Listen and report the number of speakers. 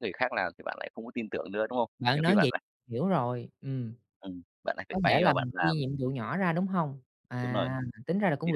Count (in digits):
2